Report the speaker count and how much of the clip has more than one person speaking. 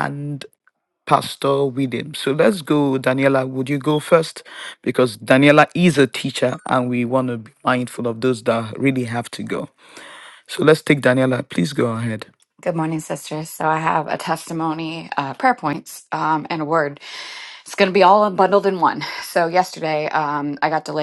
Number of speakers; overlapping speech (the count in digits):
2, no overlap